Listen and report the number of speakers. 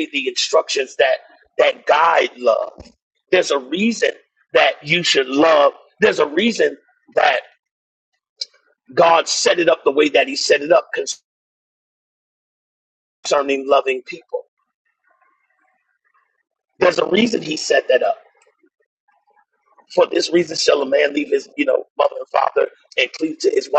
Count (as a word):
one